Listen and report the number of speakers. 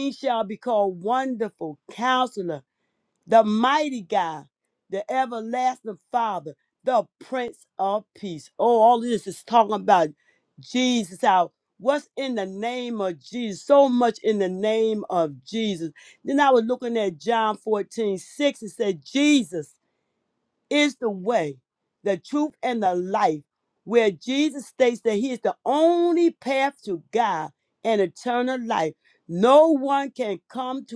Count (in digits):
1